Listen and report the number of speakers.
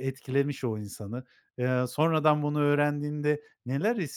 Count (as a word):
one